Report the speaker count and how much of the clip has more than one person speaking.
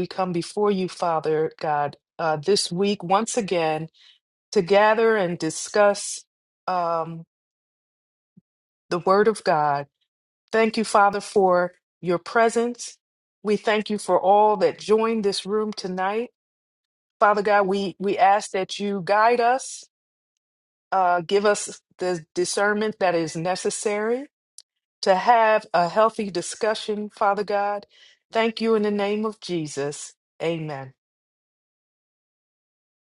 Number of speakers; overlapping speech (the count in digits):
1, no overlap